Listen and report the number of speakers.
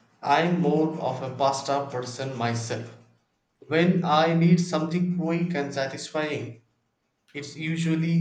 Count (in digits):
1